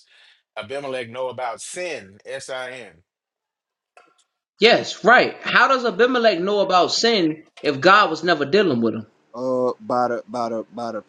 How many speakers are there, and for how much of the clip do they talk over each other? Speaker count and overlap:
3, no overlap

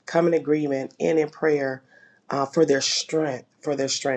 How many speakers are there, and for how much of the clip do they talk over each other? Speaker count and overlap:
1, no overlap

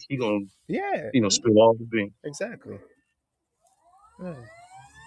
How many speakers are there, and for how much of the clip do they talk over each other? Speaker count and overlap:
2, no overlap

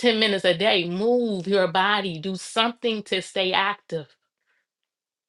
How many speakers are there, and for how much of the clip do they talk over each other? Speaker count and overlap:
1, no overlap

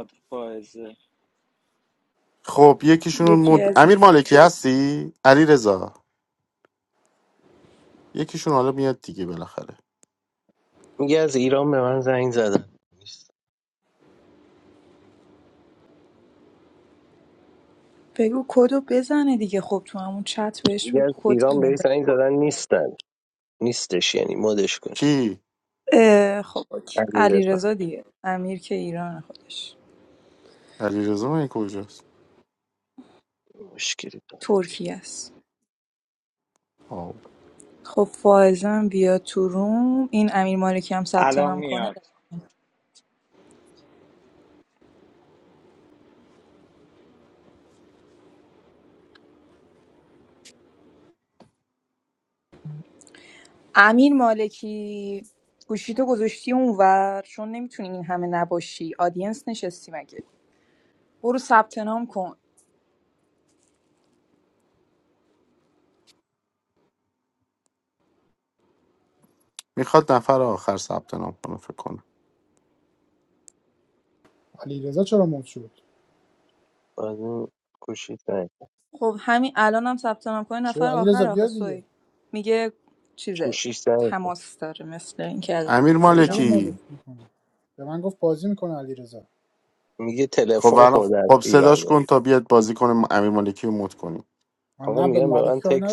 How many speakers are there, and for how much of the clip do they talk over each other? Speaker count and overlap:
5, about 8%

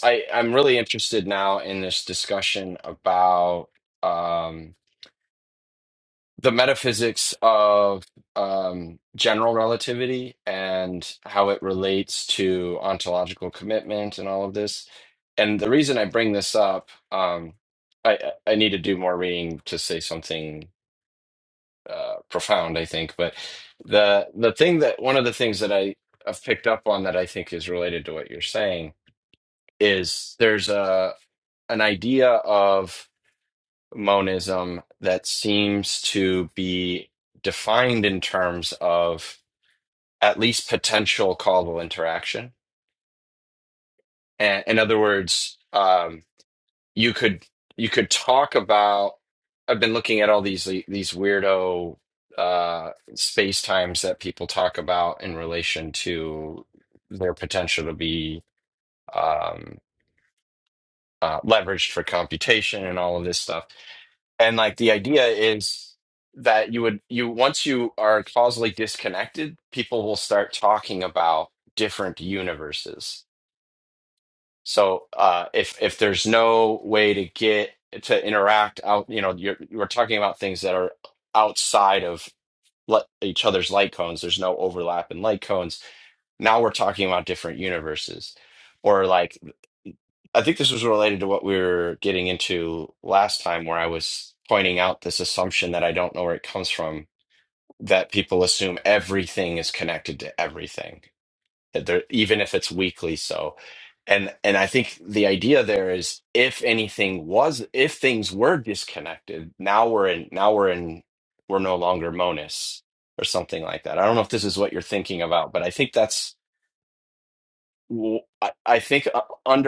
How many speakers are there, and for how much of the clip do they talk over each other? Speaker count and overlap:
1, no overlap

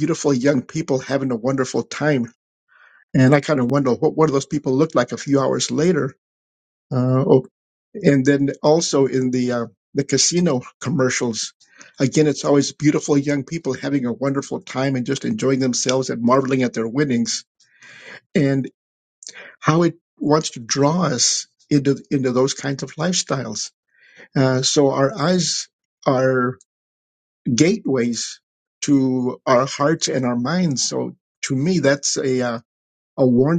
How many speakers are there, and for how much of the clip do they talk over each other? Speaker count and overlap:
1, no overlap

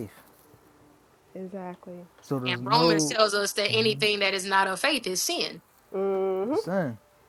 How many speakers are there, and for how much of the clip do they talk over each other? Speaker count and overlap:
3, about 13%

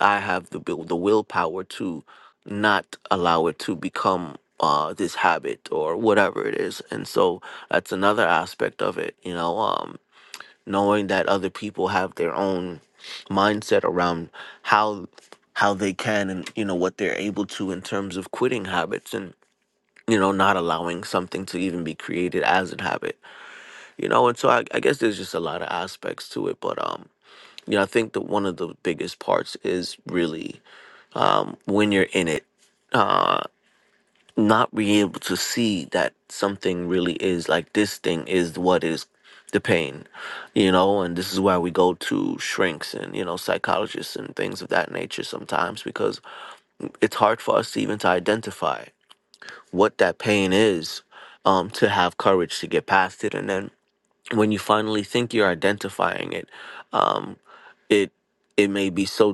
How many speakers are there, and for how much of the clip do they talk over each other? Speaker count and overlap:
1, no overlap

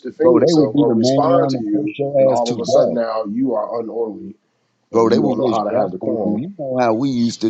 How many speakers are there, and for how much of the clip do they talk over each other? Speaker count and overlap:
2, about 56%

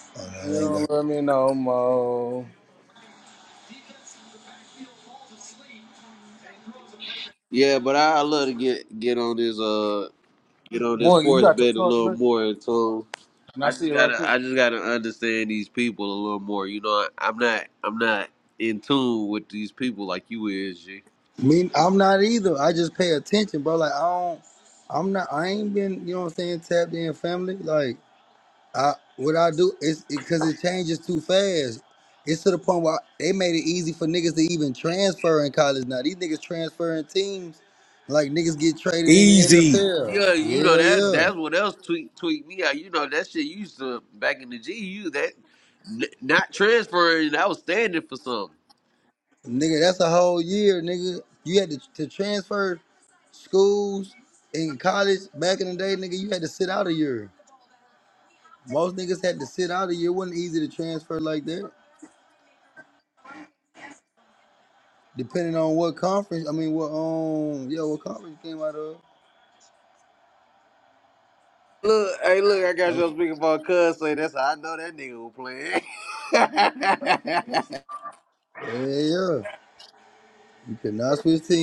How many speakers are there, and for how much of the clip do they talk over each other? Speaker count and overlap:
3, about 6%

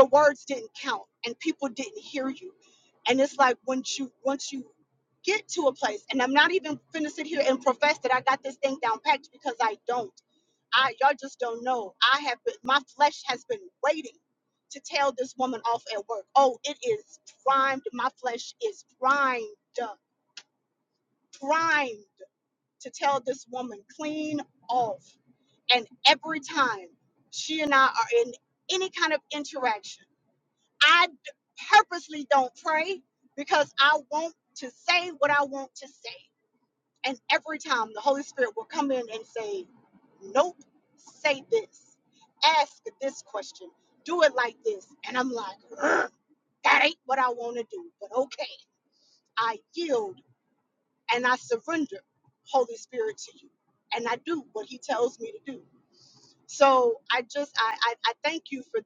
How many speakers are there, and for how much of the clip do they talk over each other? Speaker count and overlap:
1, no overlap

